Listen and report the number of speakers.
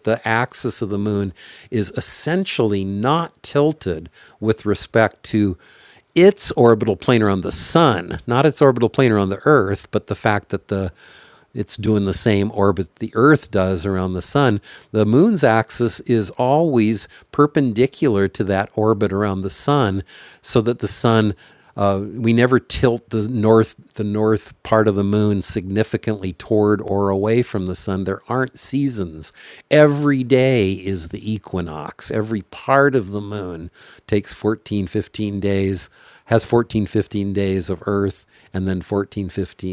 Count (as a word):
one